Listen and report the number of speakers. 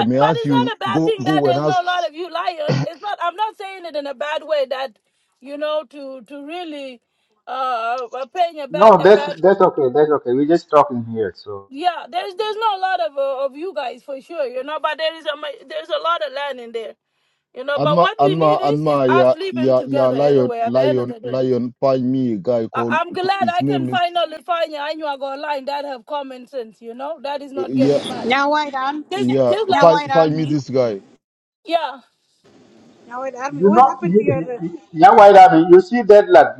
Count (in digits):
4